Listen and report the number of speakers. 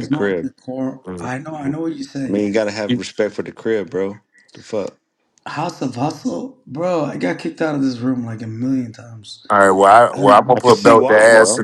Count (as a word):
three